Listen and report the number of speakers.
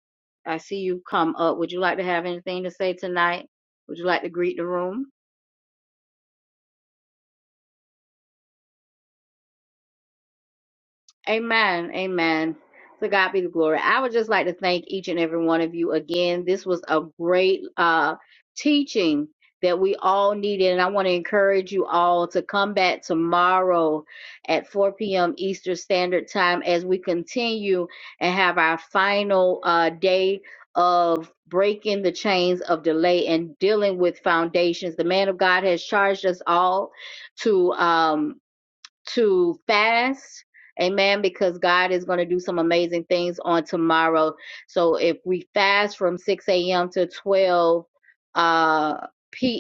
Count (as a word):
one